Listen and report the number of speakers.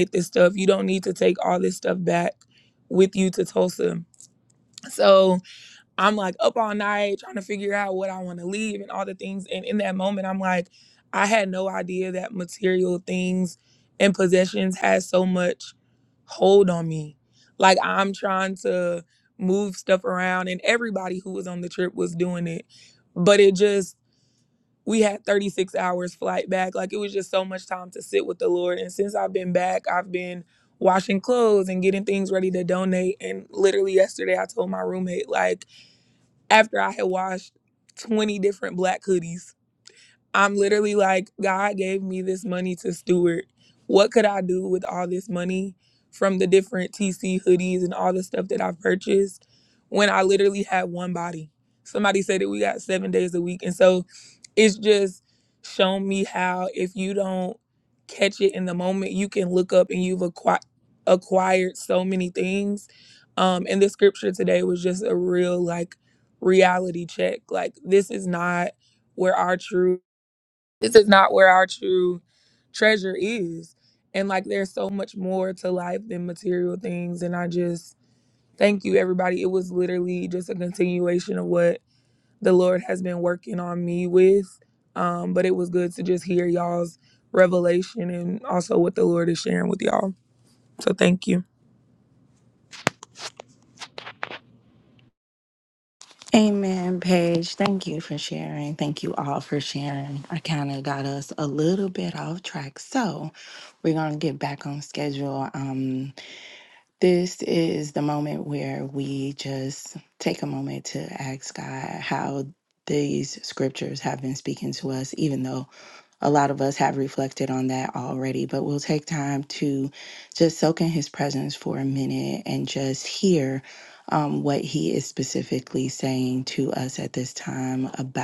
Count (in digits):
2